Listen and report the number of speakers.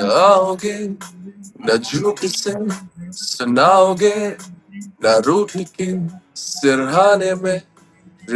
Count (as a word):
one